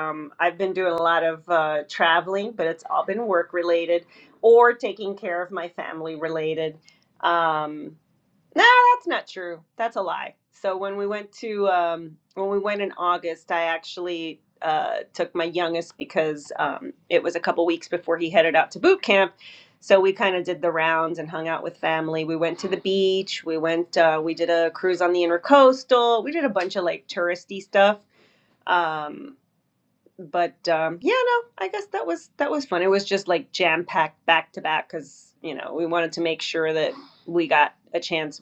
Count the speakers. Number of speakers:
1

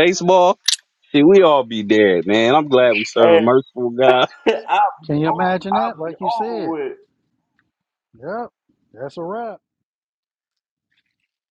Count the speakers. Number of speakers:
3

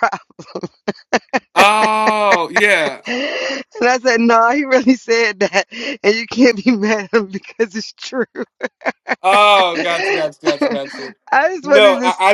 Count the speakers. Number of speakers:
2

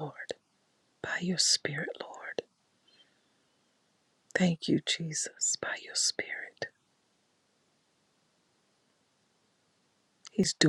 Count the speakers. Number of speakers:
1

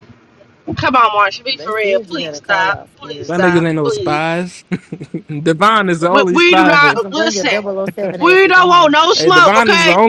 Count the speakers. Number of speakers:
3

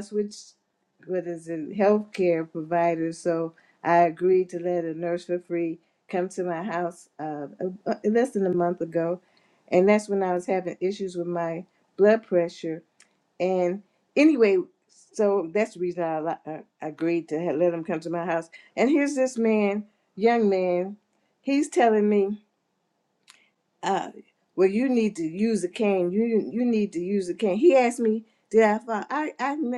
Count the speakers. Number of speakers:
1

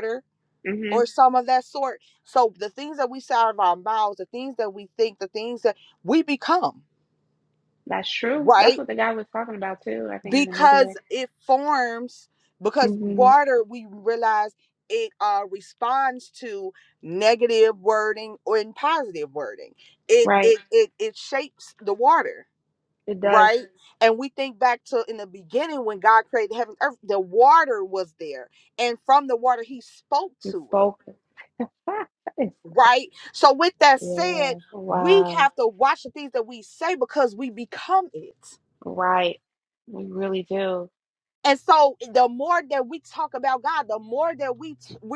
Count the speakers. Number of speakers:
2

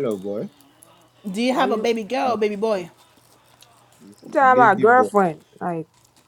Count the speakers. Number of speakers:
3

